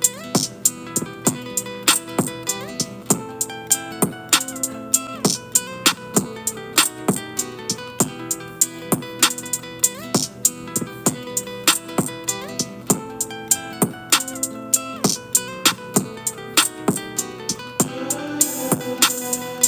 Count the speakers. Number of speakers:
0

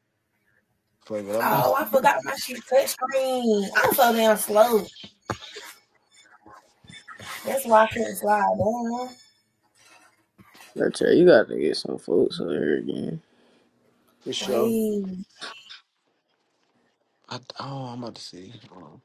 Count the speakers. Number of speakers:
3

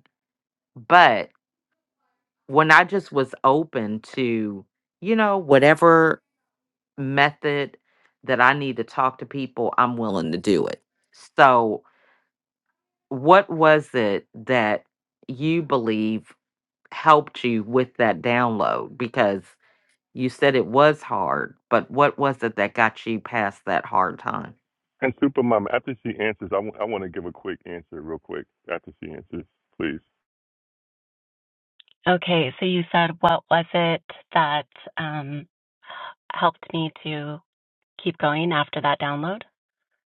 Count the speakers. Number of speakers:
3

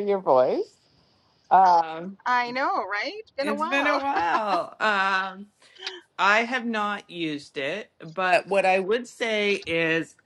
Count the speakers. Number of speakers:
2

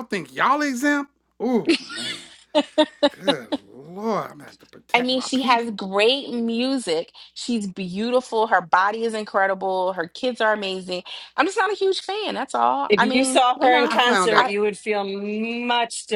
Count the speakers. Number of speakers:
3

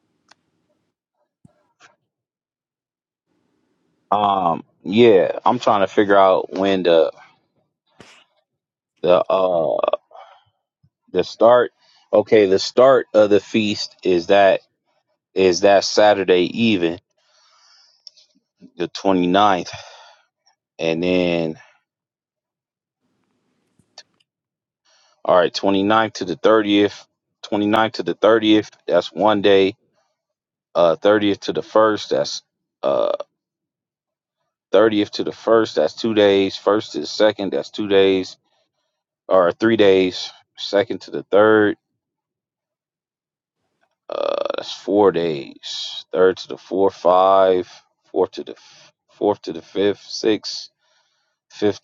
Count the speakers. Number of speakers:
1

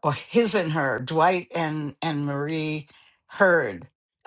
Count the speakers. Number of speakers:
1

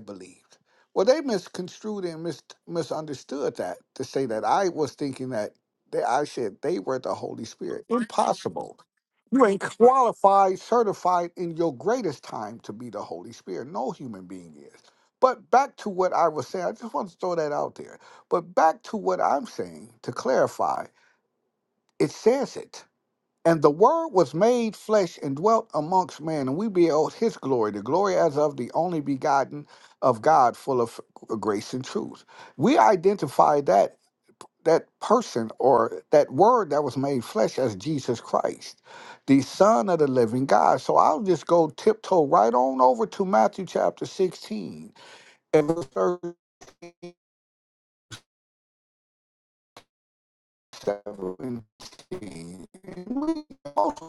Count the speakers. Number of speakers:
1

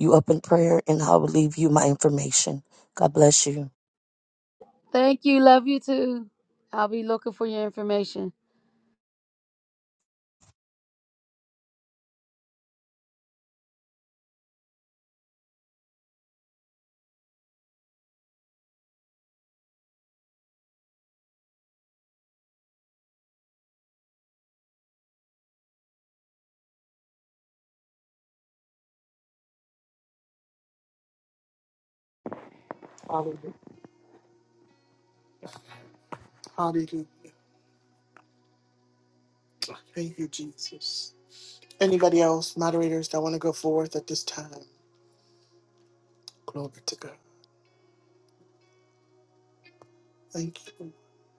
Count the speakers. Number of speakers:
3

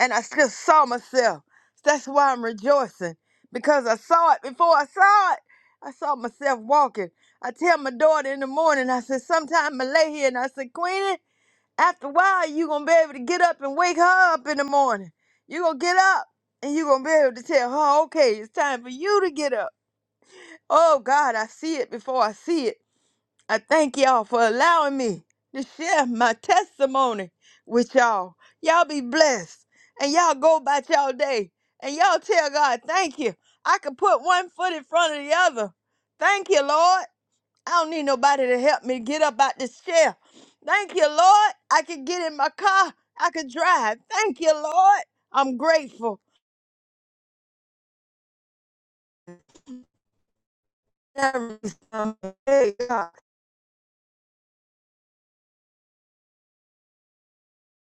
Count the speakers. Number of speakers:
1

